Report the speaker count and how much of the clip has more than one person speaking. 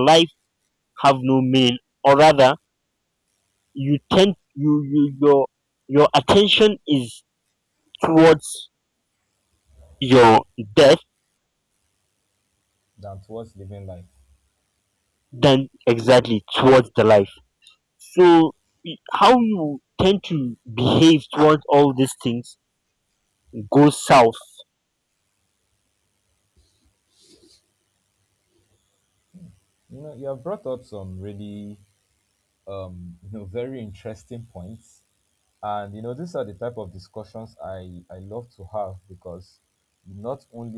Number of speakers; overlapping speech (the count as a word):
two, no overlap